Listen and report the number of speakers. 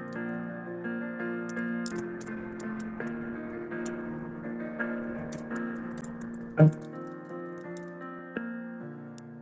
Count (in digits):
0